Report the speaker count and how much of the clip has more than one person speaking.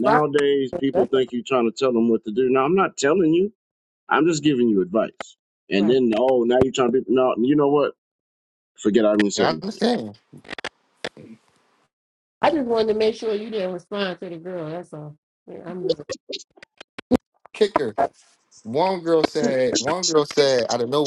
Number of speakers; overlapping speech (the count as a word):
three, about 5%